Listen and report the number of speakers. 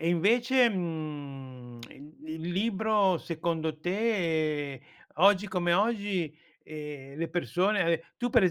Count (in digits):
1